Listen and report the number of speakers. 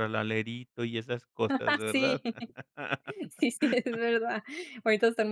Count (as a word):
two